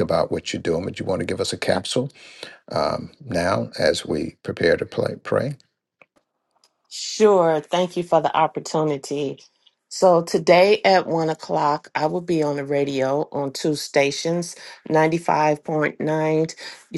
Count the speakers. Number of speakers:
two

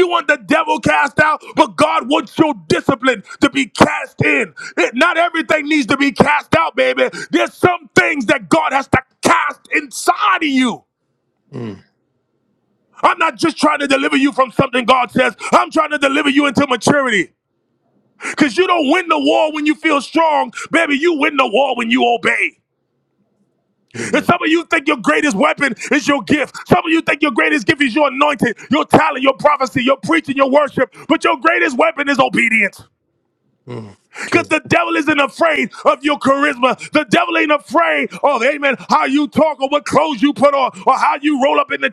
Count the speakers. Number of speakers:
two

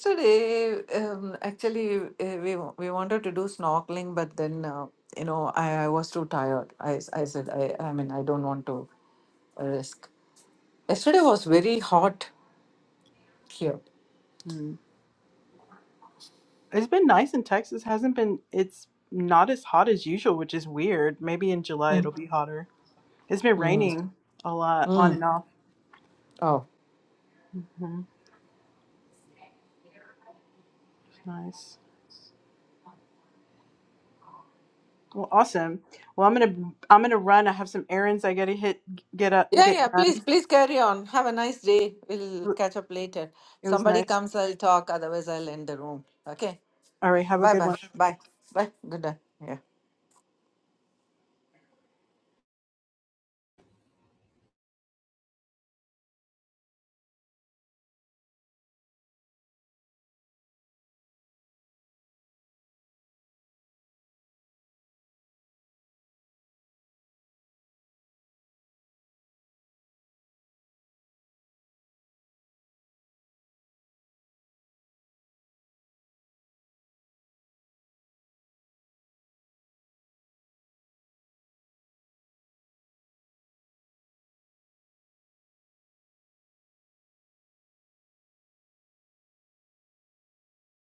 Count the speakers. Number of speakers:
two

